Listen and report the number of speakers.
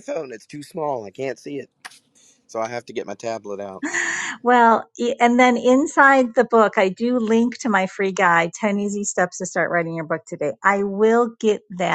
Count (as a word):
two